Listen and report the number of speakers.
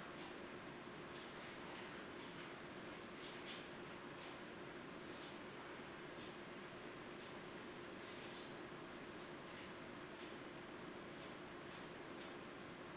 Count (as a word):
zero